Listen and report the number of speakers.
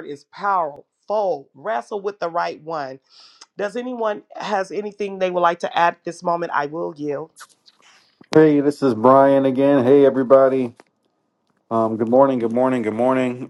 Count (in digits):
2